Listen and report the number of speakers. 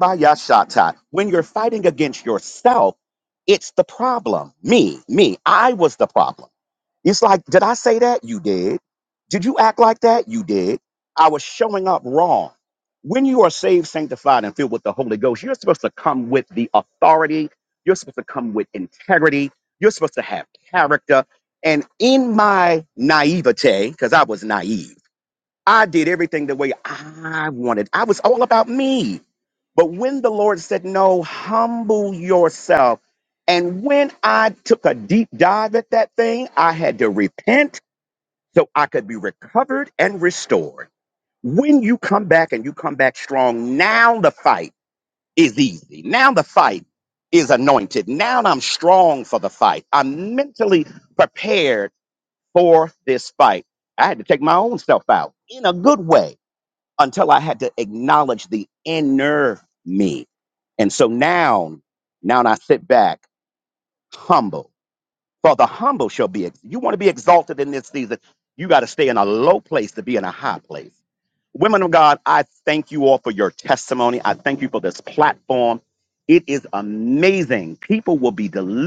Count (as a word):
one